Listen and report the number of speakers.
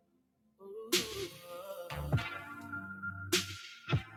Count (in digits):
0